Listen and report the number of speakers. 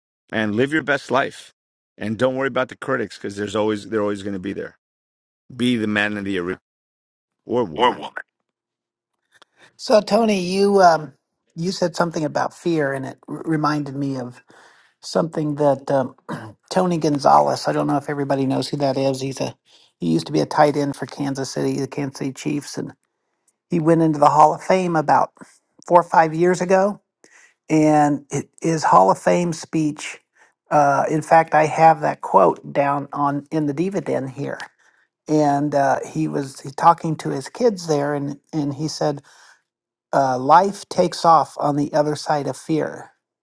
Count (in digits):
2